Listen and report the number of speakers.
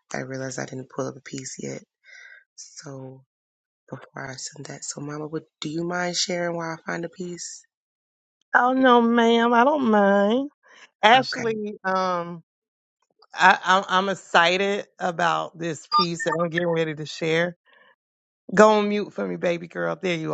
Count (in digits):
2